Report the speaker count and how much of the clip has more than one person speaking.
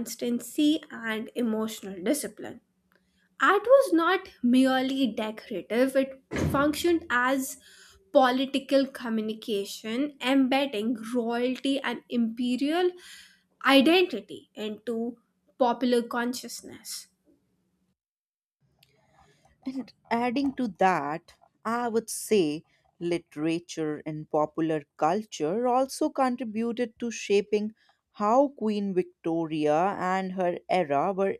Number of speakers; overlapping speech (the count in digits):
2, no overlap